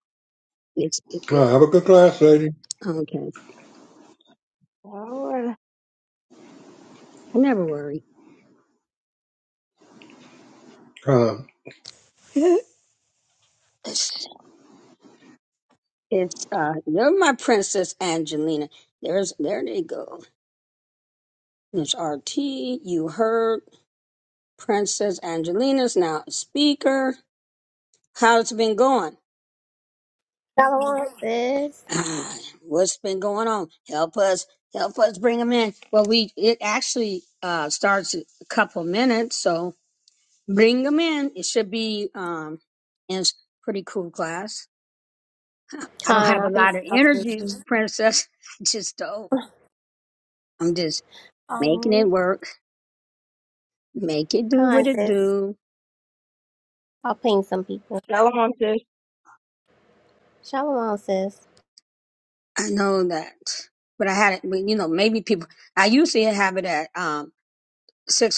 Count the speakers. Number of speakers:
4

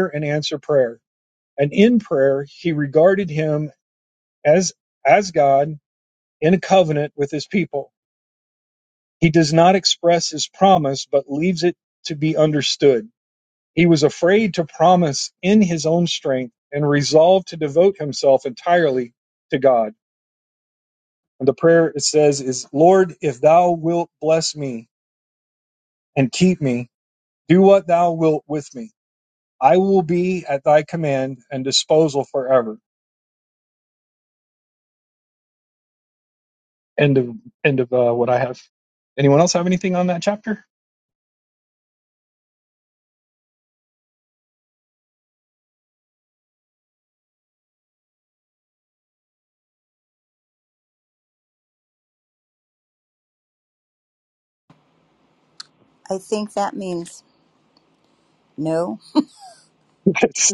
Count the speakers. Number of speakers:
2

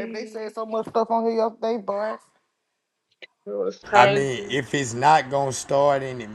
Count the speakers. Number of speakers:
3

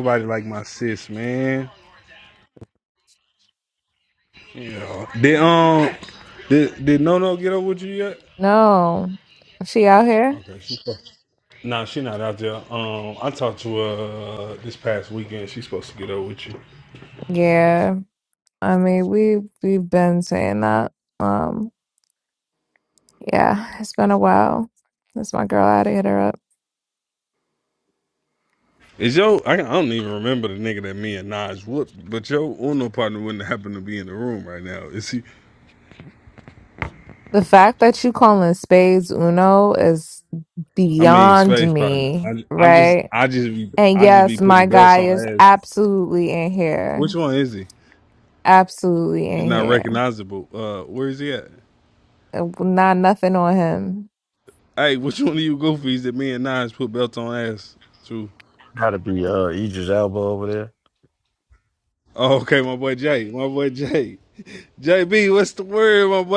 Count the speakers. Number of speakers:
3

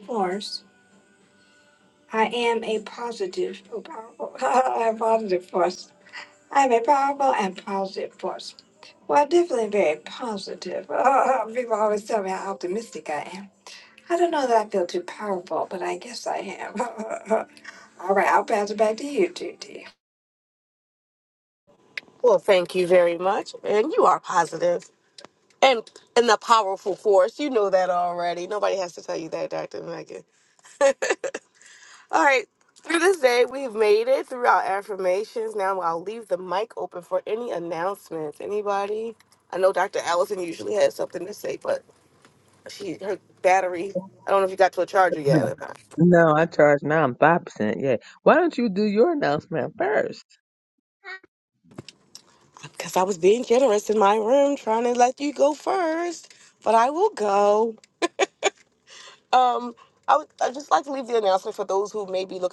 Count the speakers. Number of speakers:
3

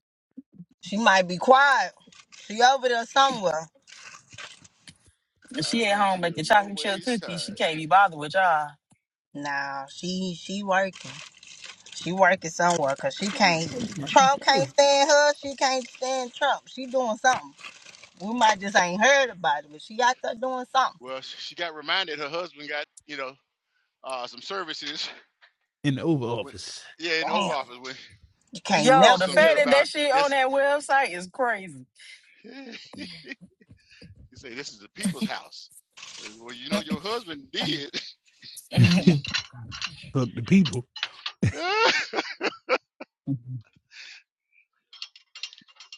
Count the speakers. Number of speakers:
4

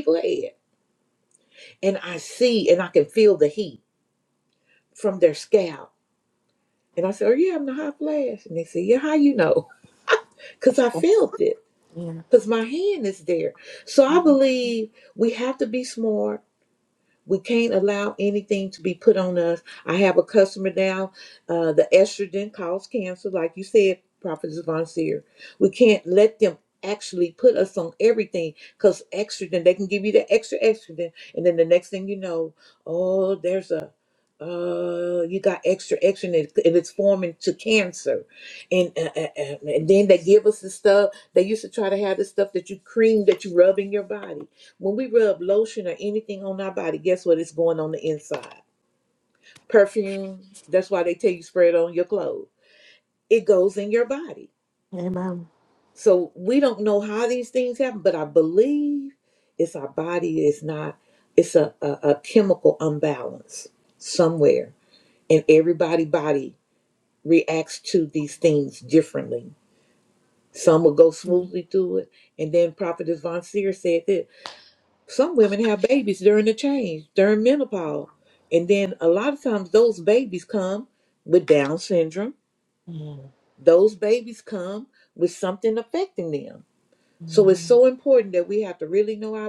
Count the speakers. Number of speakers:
2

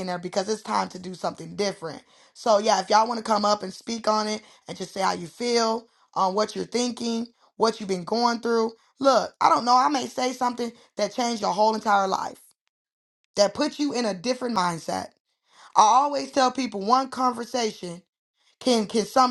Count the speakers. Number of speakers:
1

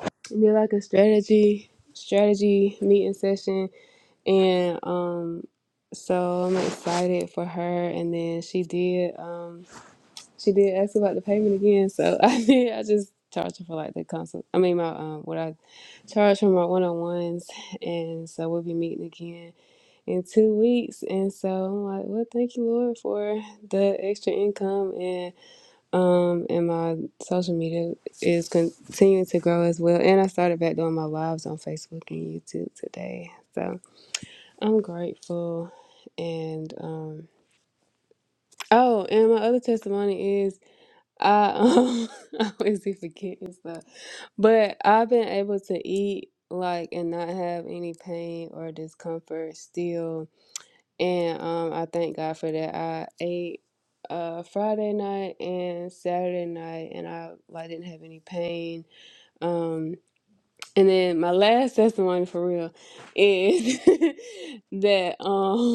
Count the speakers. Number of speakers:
1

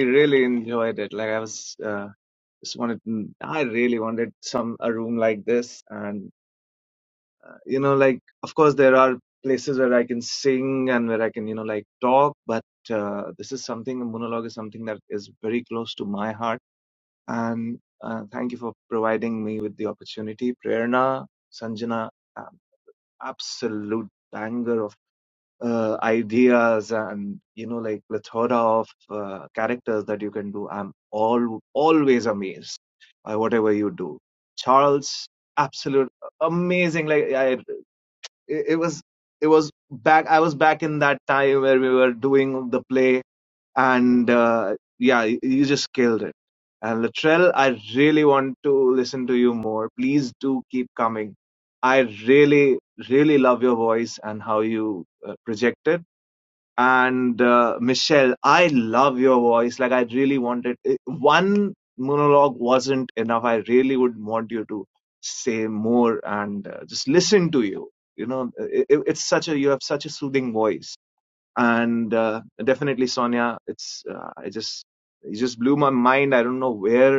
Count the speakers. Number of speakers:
1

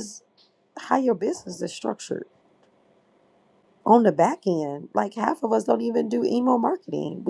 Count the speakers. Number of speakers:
1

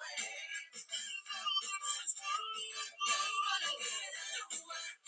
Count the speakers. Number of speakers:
0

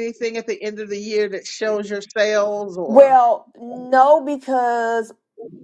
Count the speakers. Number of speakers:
2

